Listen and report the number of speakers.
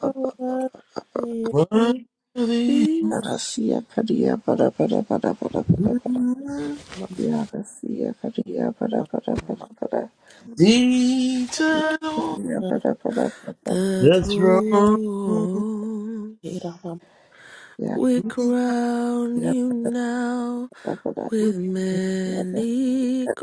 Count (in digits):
4